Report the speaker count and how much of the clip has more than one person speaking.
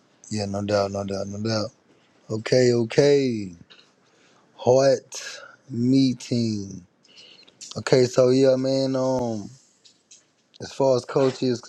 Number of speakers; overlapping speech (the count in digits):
1, no overlap